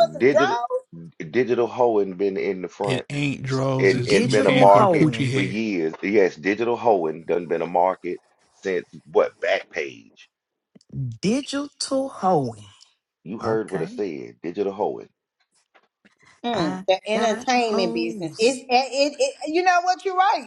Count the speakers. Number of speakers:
four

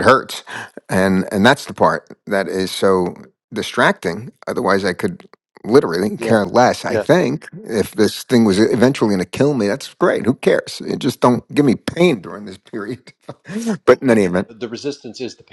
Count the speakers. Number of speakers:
two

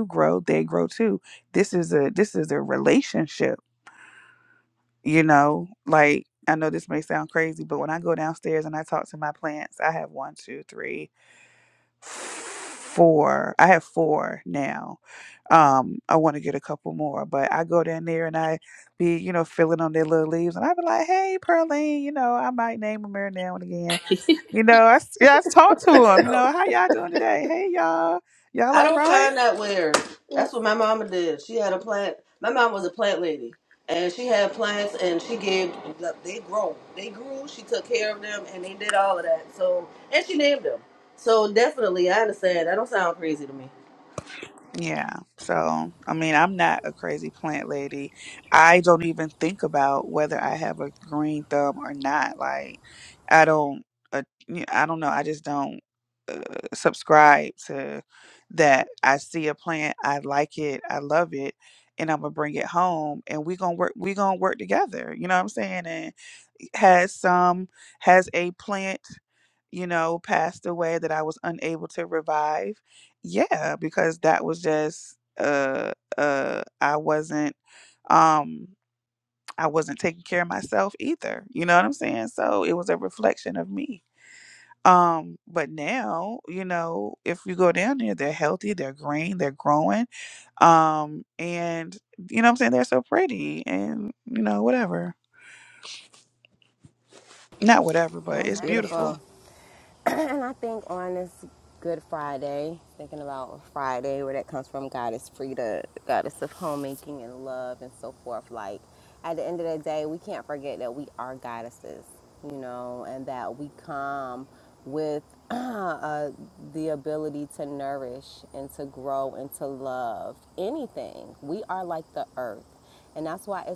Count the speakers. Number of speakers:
three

